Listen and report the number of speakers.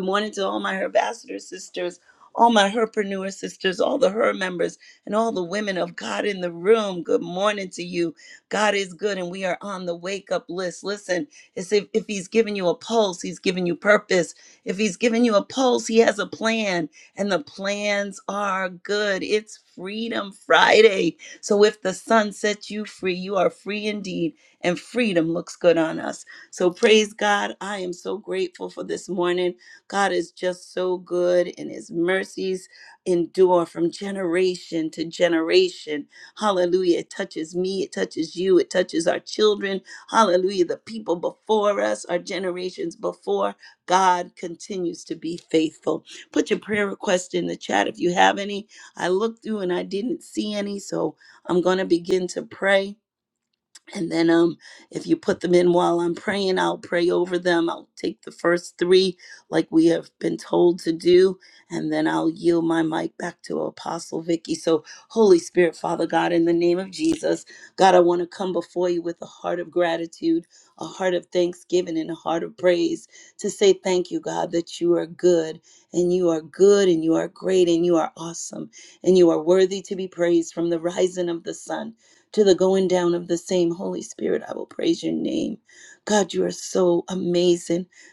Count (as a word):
one